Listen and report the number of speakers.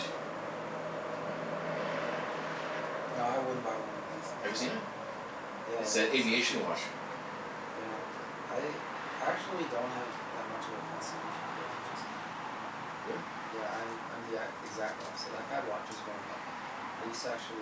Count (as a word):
two